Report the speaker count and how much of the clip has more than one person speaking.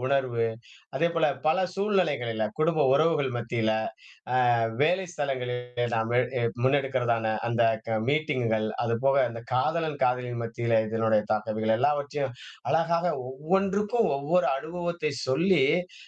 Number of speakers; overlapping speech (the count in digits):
1, no overlap